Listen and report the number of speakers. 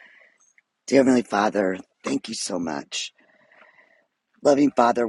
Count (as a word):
one